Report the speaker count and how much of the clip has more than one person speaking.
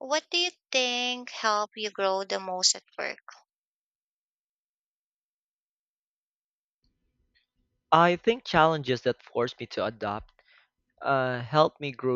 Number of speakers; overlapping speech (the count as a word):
two, no overlap